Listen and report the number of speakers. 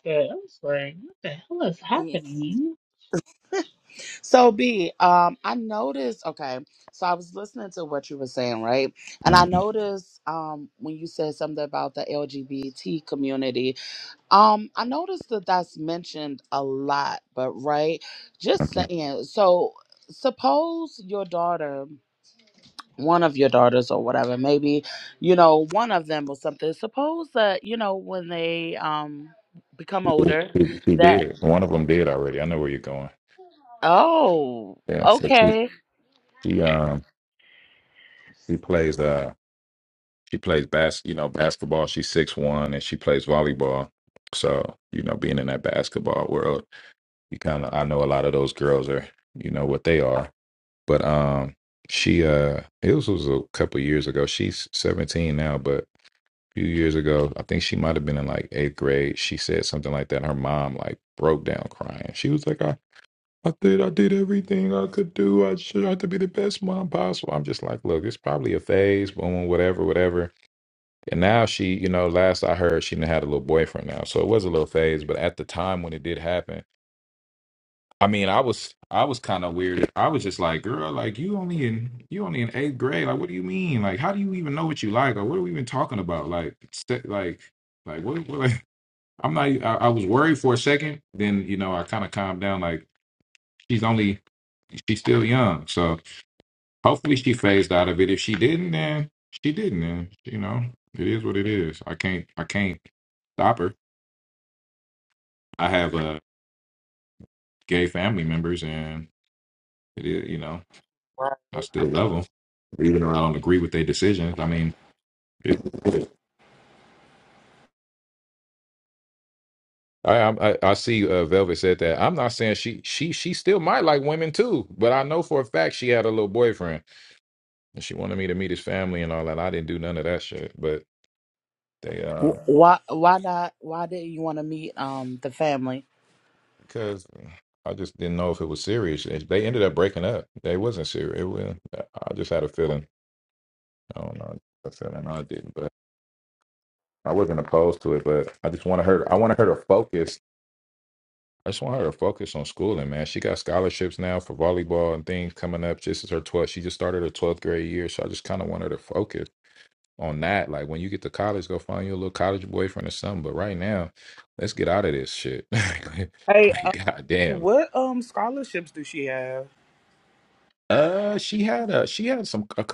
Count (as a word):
four